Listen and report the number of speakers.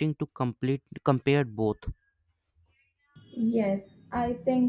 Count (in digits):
2